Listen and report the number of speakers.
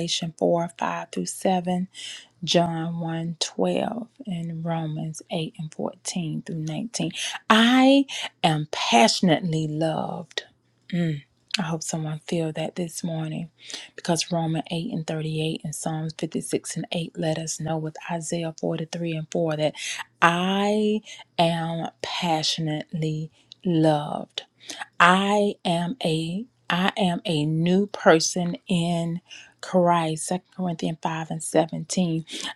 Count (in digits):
1